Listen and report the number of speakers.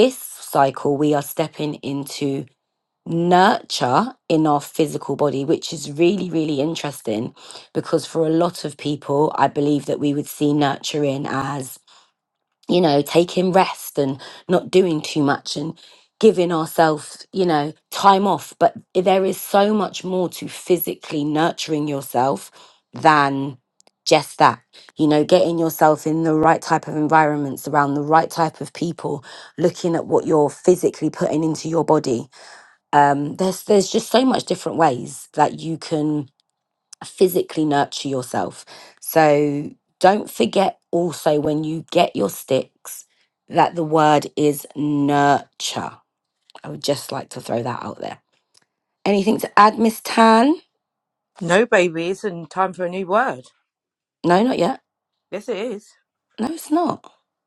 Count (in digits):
2